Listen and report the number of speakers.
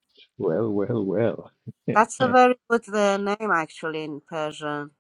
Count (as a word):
two